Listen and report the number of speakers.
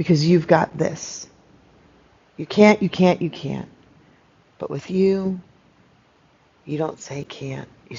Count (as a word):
one